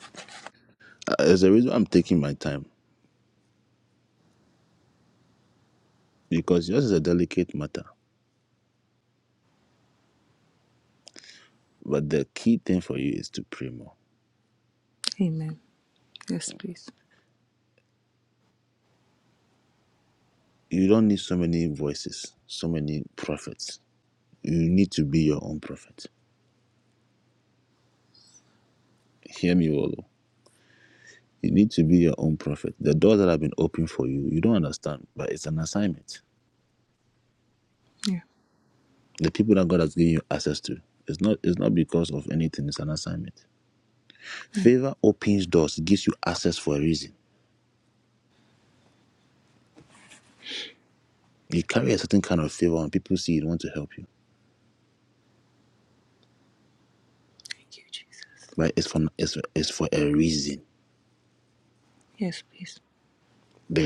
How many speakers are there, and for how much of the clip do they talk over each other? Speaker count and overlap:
two, under 1%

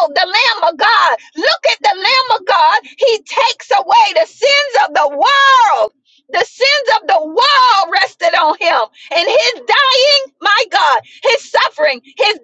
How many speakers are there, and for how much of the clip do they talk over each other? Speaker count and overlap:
one, no overlap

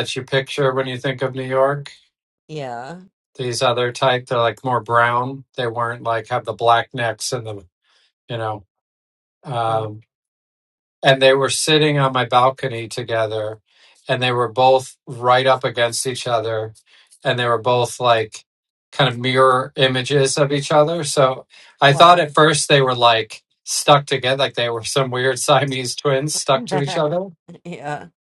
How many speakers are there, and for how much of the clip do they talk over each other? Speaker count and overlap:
two, about 2%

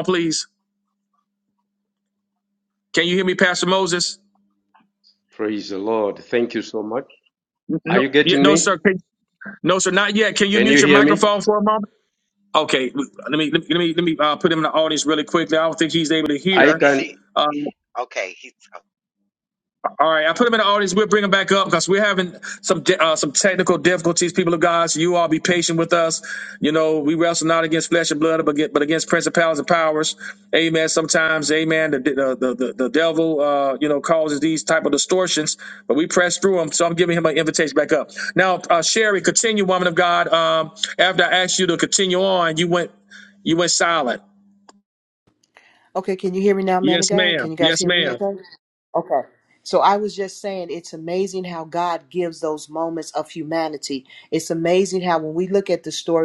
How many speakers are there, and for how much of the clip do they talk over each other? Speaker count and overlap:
four, about 6%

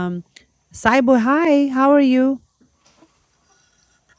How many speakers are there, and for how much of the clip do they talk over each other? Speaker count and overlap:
one, no overlap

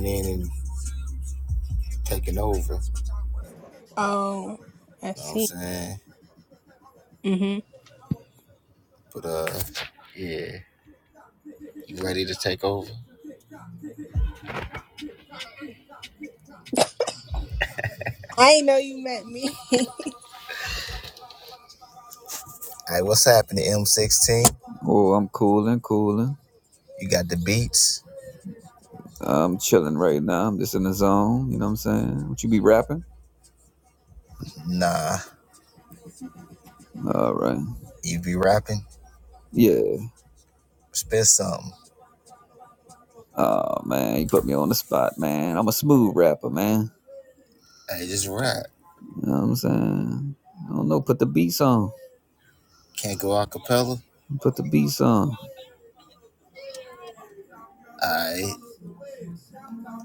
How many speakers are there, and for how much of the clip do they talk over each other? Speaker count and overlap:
three, about 1%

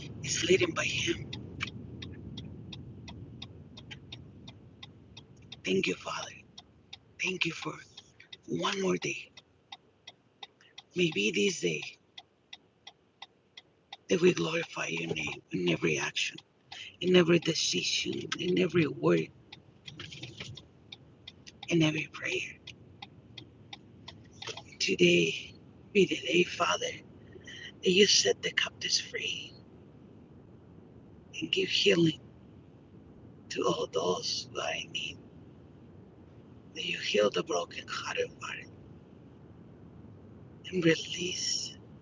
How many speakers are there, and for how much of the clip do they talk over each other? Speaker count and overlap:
one, no overlap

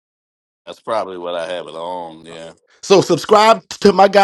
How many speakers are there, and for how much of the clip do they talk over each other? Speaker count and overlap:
two, no overlap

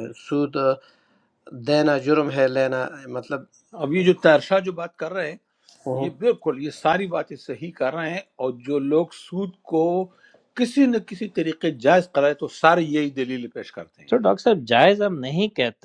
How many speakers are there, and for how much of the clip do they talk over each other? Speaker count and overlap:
three, about 1%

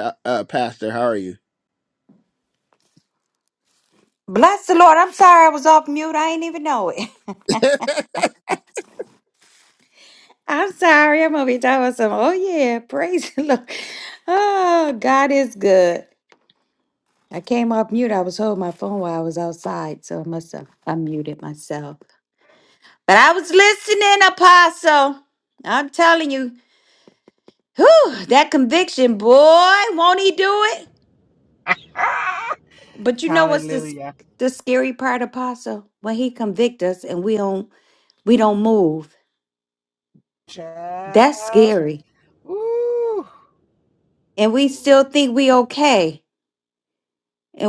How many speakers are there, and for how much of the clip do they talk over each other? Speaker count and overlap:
three, about 3%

